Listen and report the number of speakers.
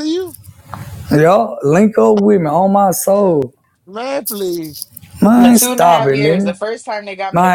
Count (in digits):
3